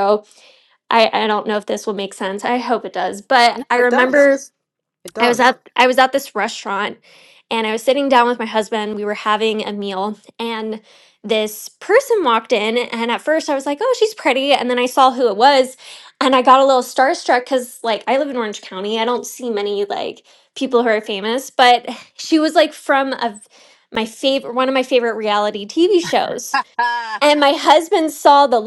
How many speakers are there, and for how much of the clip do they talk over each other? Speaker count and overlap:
2, about 3%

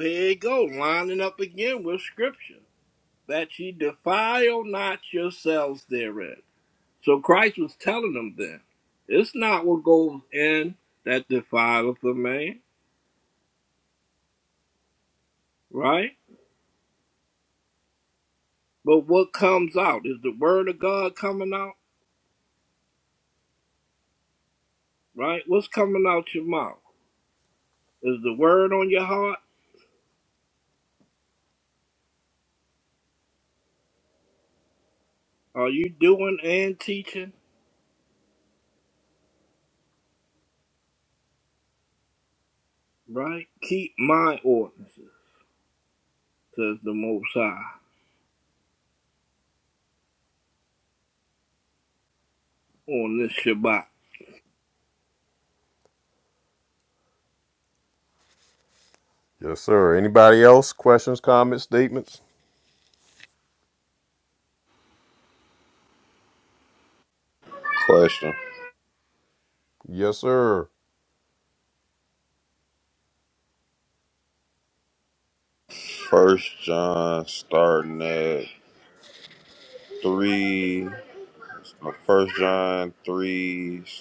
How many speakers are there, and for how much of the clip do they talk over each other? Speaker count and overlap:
3, no overlap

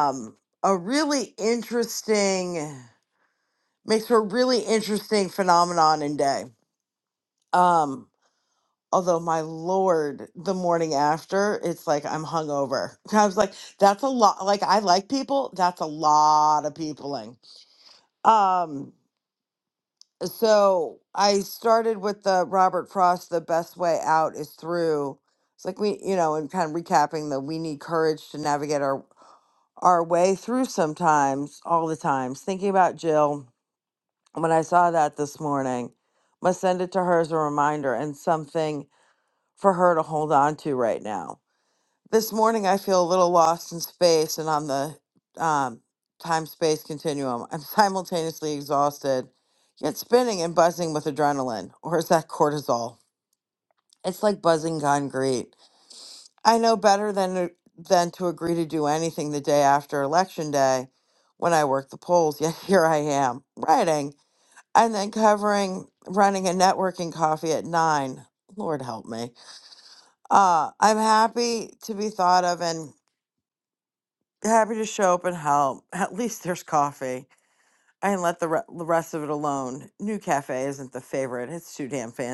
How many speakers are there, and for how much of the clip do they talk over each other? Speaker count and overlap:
1, no overlap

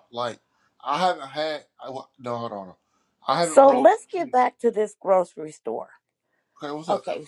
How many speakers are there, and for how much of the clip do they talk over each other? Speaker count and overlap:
2, about 9%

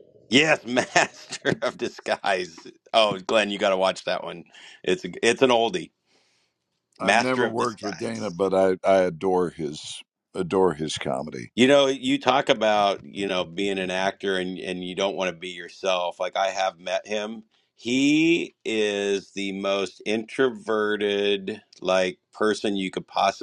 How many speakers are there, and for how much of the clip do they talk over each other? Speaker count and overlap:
2, about 4%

